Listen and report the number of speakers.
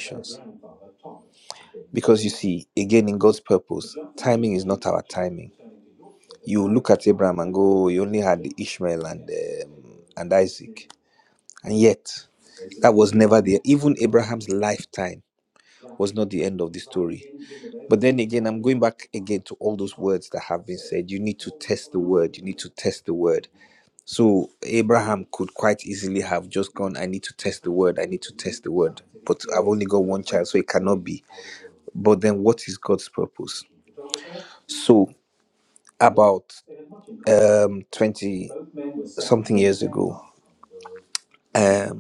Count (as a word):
one